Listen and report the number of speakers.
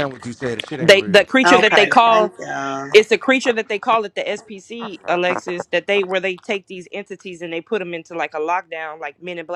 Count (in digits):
3